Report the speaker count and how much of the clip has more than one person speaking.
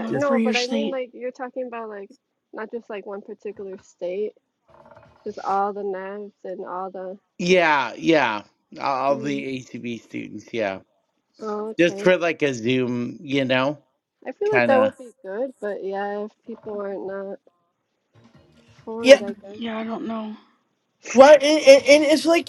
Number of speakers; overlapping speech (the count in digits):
4, about 10%